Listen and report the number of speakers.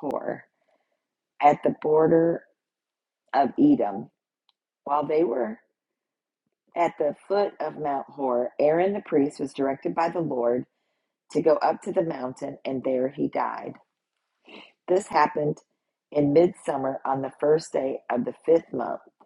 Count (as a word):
one